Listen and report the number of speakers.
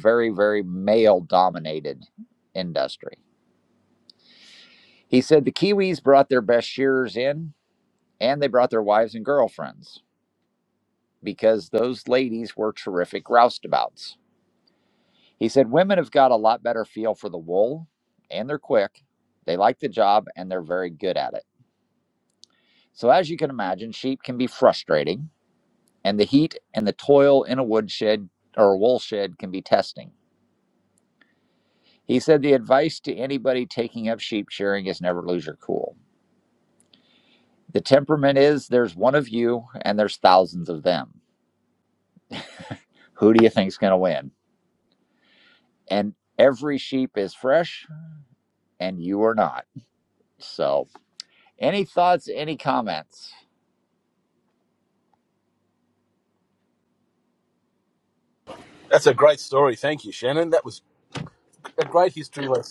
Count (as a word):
two